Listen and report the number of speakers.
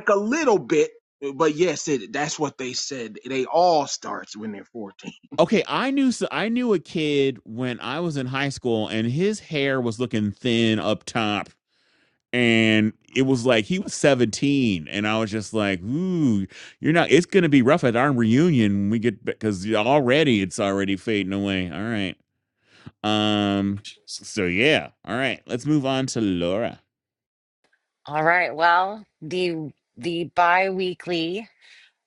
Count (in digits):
3